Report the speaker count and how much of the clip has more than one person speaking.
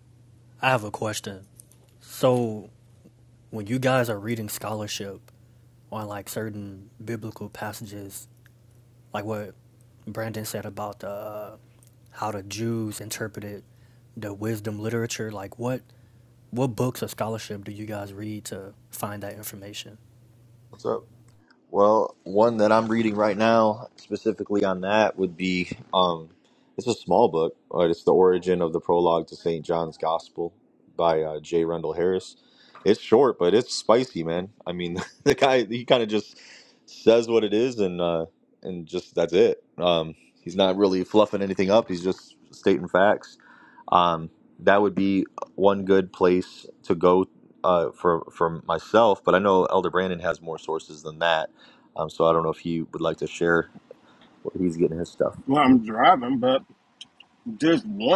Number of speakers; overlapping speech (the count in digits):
3, no overlap